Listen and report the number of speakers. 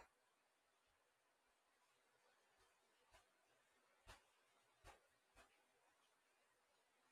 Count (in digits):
0